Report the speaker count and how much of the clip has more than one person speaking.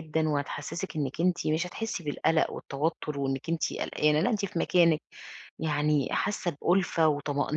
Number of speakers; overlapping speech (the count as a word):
one, no overlap